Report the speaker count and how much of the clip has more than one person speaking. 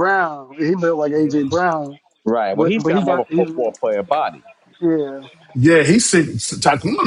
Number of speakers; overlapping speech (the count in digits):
3, about 16%